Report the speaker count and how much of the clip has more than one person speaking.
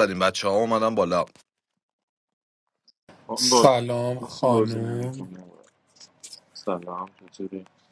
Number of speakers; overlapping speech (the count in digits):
3, about 17%